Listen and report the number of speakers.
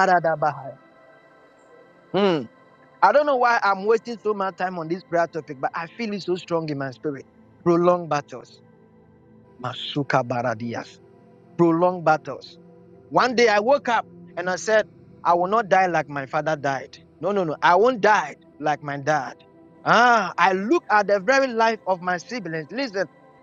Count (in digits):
1